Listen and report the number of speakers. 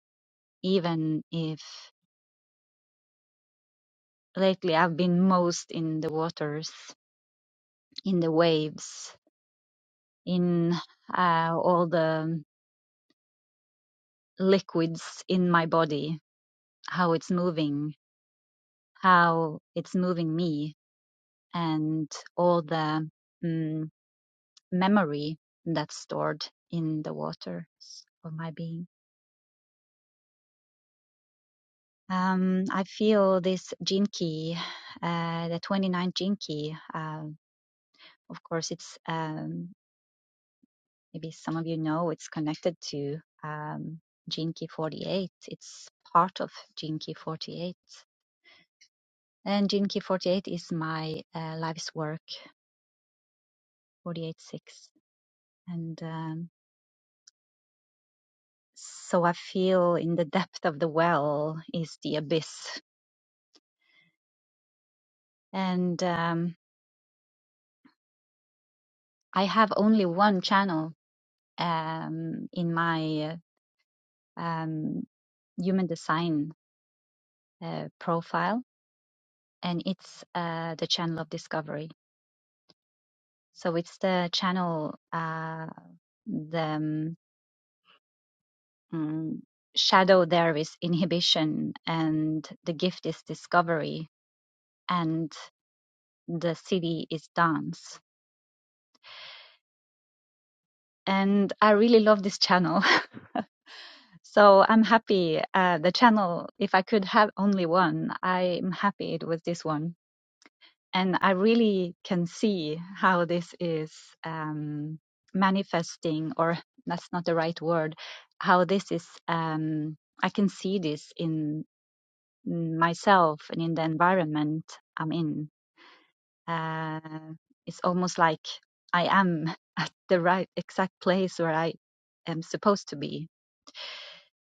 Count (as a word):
one